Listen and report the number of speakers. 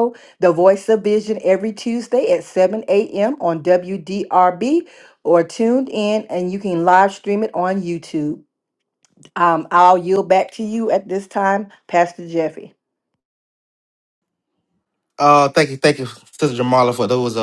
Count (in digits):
2